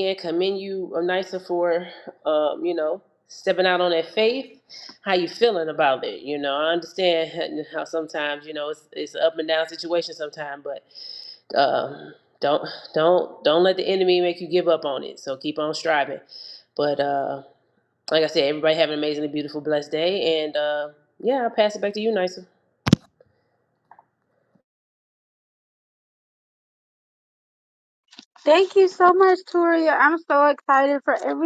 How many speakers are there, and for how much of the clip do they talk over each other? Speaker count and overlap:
2, no overlap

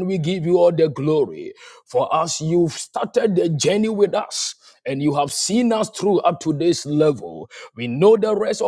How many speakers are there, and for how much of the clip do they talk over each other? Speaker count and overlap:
1, no overlap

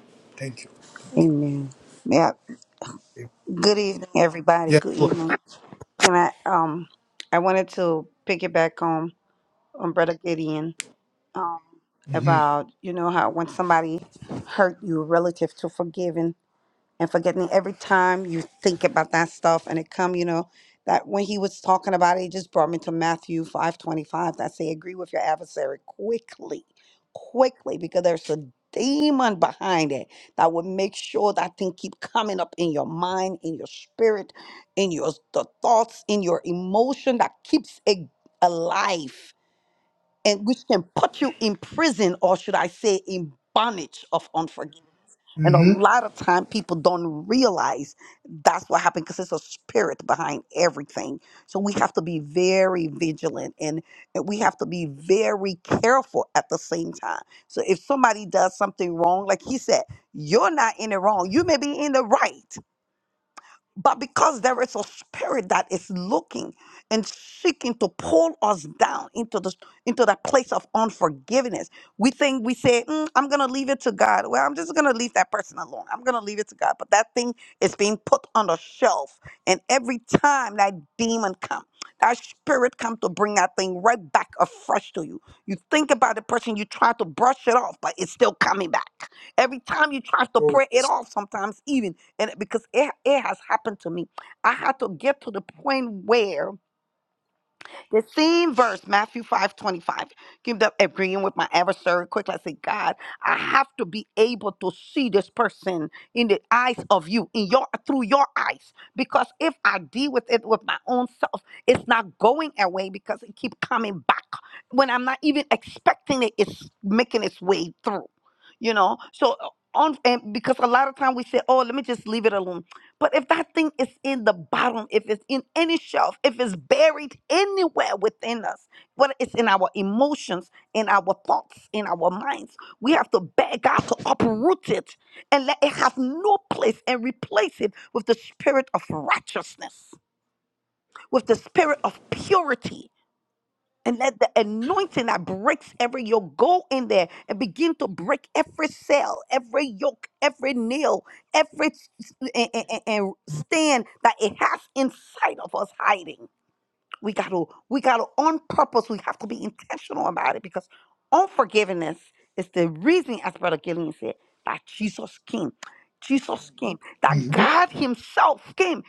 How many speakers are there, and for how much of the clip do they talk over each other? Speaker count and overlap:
2, about 1%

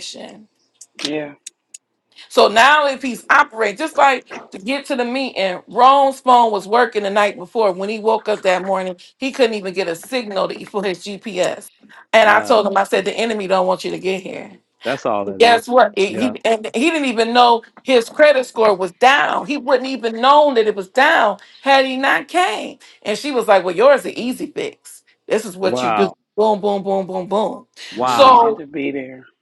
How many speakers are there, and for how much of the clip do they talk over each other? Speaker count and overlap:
3, about 6%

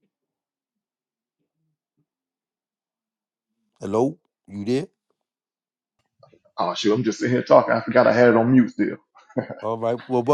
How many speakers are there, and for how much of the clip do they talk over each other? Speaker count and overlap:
2, no overlap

